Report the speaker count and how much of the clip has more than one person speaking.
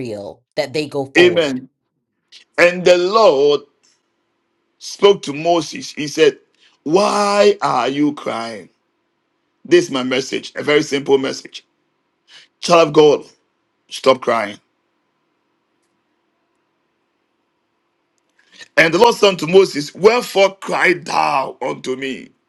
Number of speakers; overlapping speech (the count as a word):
two, about 2%